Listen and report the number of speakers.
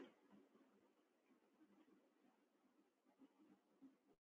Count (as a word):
zero